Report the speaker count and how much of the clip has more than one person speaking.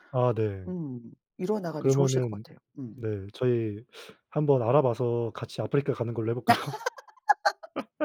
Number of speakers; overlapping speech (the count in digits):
2, about 8%